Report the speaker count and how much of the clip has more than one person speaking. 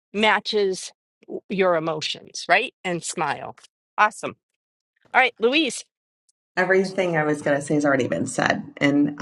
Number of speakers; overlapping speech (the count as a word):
two, no overlap